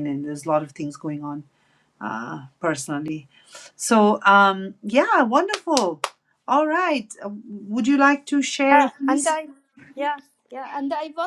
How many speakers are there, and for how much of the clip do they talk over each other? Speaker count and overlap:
2, about 4%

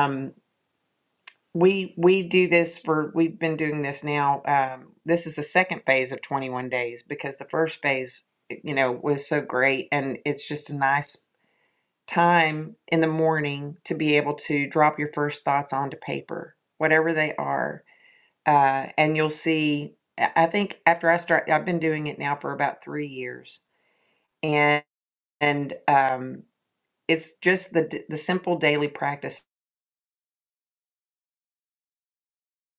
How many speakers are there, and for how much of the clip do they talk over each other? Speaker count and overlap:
1, no overlap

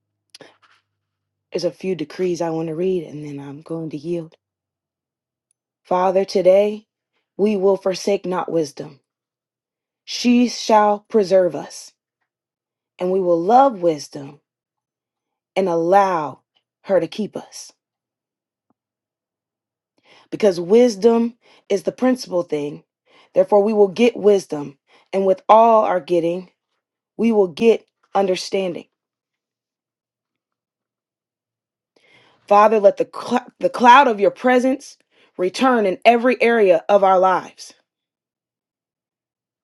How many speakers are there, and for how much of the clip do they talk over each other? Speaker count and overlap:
1, no overlap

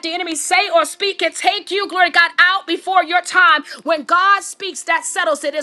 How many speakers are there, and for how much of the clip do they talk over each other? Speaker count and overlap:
1, no overlap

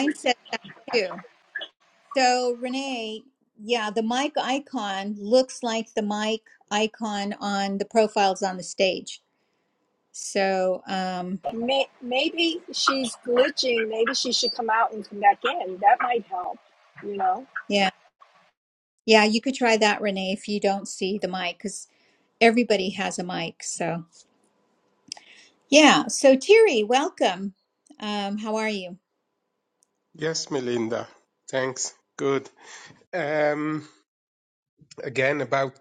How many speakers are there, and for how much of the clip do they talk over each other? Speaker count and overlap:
3, under 1%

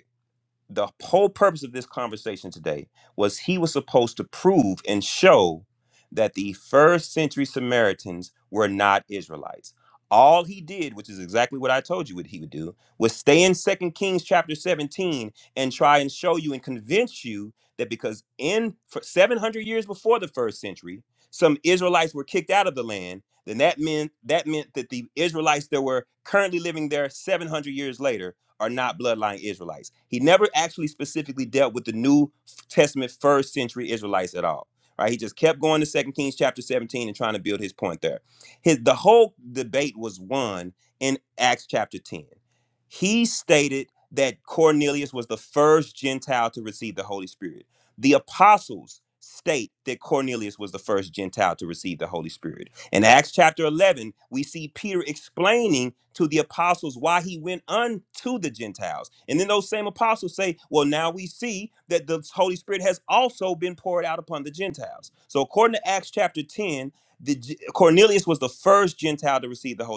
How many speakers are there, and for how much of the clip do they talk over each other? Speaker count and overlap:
1, no overlap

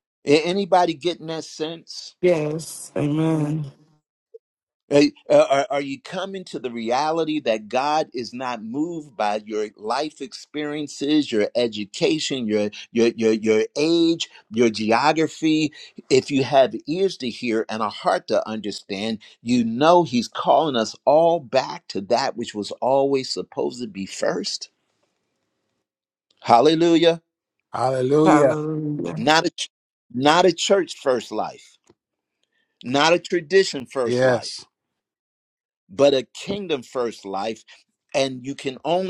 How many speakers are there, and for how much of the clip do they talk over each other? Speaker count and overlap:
3, about 2%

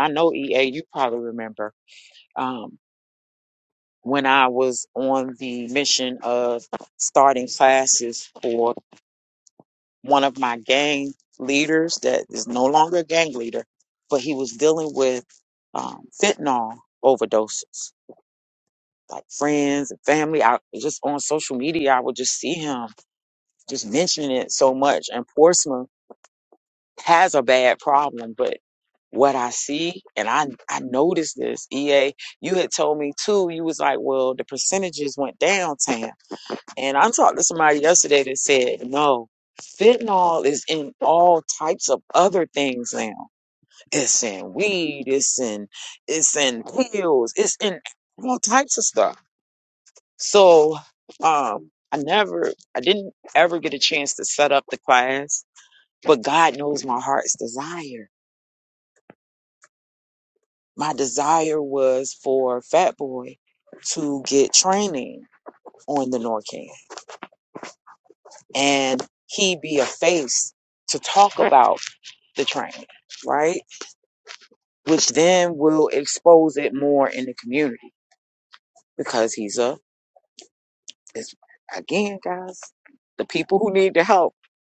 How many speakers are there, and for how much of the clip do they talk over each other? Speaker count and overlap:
1, no overlap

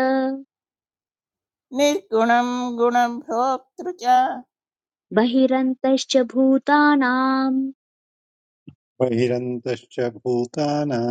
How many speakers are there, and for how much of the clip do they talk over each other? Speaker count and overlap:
3, no overlap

